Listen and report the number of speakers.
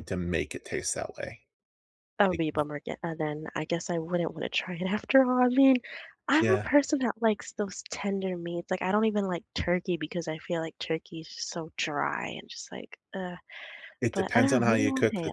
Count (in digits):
2